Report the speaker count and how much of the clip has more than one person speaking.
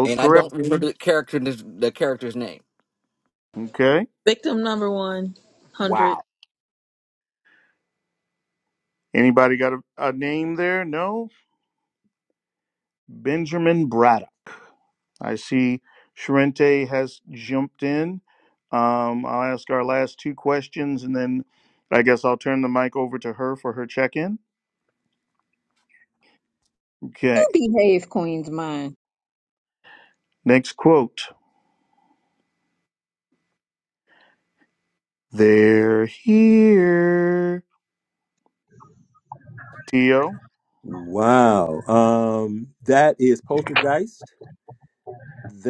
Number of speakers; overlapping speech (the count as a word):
five, about 2%